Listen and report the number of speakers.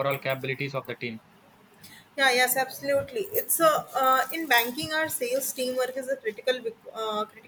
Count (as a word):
two